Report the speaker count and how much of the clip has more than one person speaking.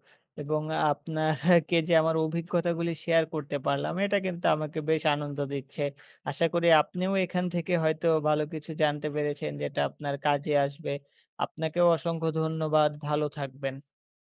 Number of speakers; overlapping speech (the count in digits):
1, no overlap